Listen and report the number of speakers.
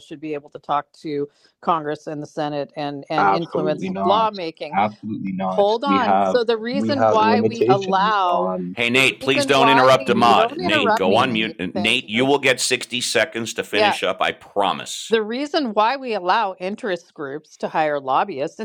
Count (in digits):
3